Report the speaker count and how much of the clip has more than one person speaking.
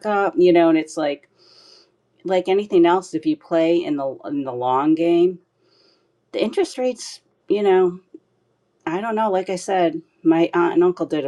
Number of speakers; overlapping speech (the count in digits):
1, no overlap